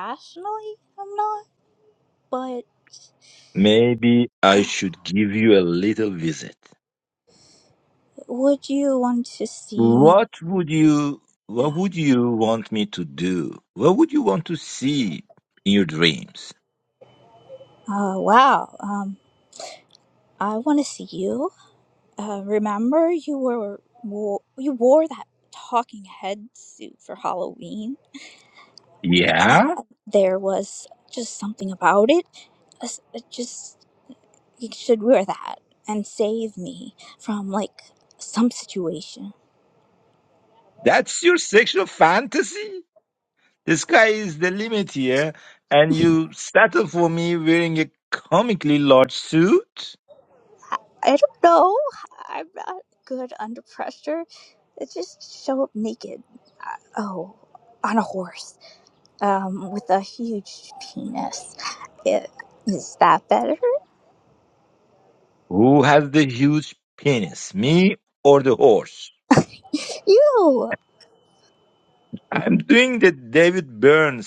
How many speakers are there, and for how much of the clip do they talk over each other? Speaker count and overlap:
2, about 1%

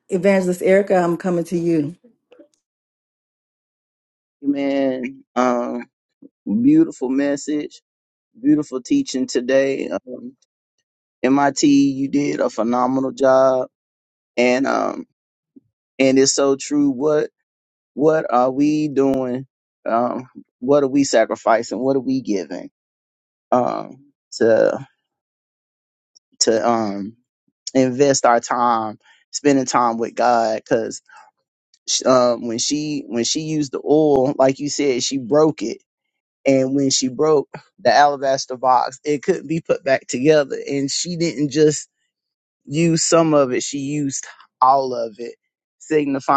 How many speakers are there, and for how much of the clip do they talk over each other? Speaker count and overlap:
2, no overlap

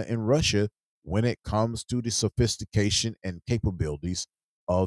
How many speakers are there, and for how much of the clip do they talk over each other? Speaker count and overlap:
1, no overlap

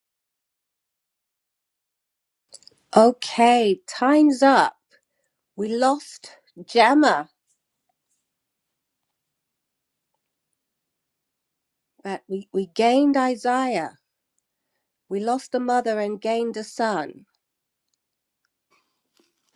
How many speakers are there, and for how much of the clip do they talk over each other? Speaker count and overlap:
1, no overlap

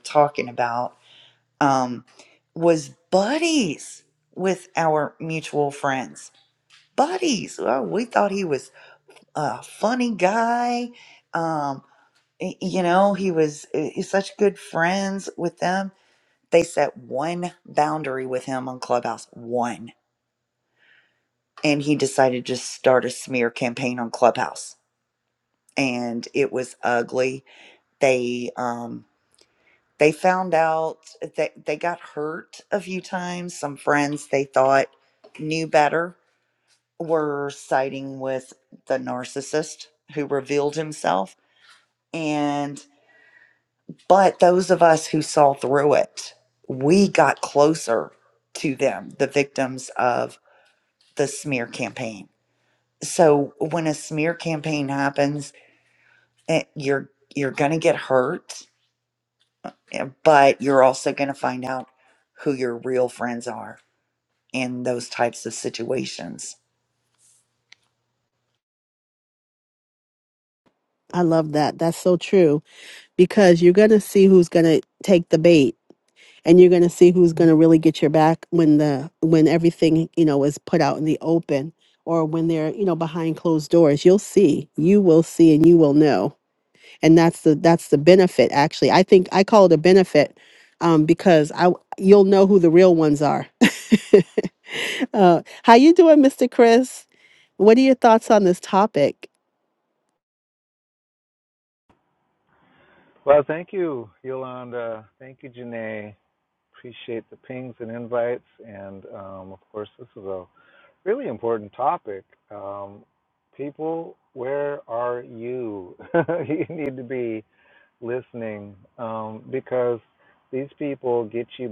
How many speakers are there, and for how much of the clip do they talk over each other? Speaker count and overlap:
3, no overlap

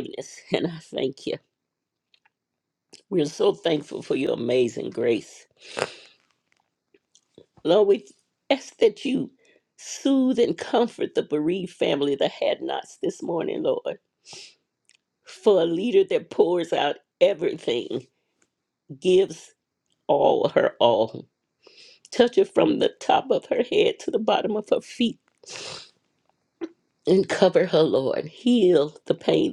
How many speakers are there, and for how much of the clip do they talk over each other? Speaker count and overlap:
1, no overlap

